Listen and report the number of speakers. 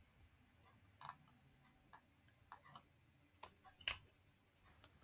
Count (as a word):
zero